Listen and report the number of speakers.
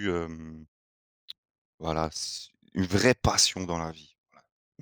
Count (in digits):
1